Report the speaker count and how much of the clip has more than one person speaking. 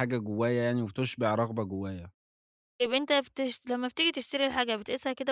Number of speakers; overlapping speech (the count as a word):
two, no overlap